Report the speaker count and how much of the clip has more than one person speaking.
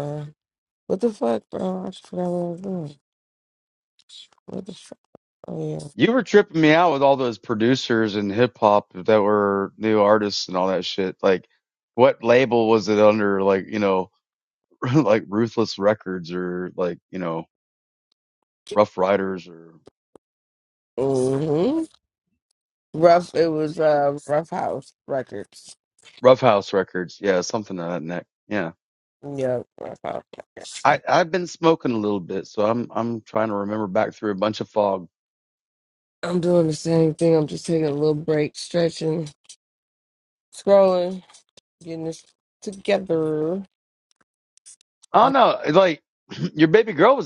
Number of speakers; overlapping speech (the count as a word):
two, under 1%